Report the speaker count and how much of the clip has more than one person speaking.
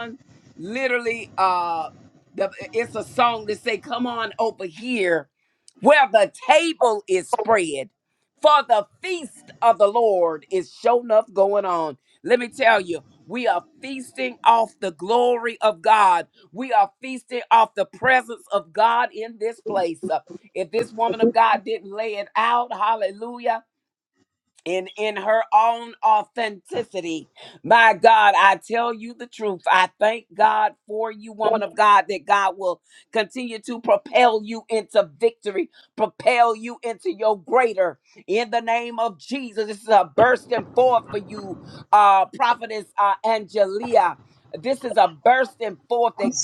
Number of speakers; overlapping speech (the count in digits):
1, no overlap